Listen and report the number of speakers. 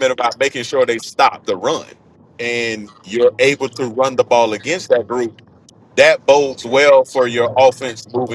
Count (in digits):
1